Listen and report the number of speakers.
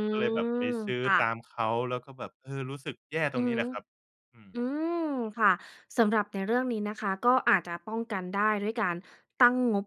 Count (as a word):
two